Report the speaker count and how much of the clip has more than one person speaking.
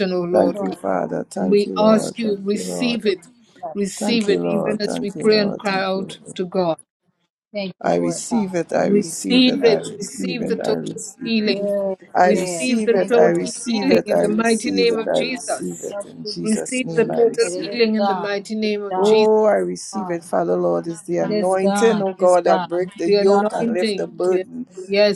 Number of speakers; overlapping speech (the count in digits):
3, about 75%